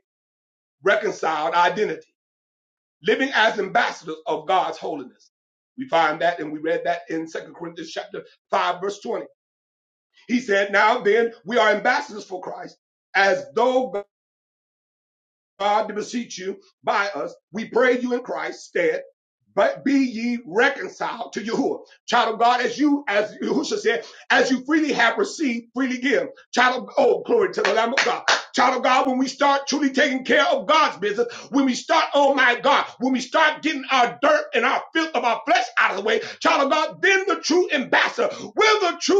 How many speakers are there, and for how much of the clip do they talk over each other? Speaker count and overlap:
one, no overlap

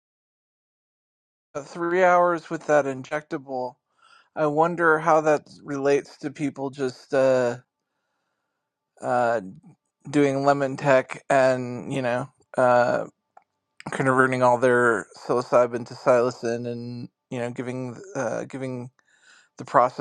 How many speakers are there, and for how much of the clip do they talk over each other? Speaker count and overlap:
one, no overlap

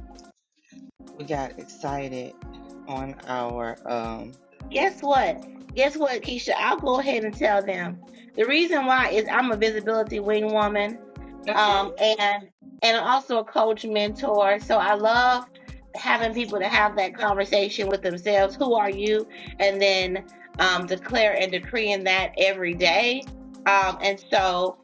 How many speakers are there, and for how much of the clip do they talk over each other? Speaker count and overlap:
two, about 1%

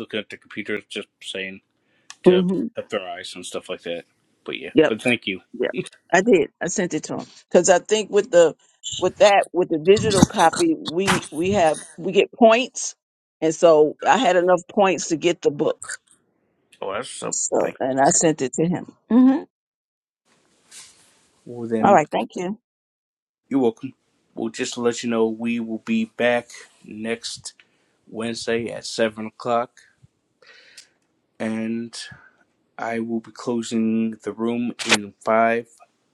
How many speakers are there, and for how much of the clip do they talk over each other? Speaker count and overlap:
two, about 3%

